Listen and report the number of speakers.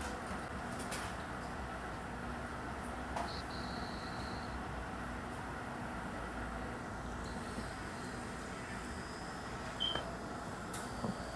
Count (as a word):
zero